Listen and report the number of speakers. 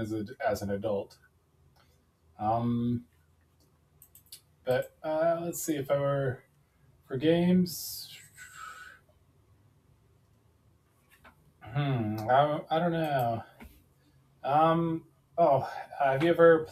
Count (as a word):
one